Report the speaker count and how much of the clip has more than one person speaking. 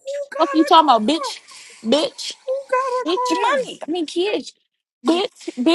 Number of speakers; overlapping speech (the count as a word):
three, about 19%